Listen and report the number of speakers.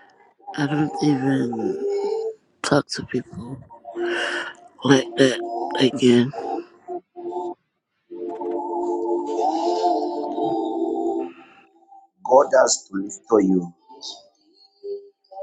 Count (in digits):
2